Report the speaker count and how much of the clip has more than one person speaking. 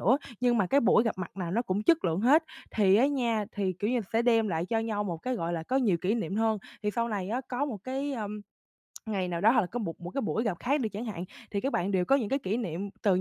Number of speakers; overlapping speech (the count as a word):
one, no overlap